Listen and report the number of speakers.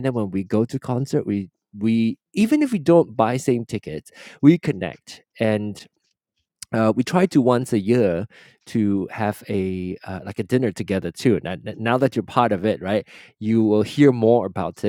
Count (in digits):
1